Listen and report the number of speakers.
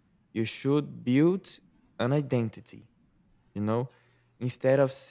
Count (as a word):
one